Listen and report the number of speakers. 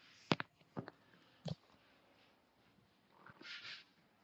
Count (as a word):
zero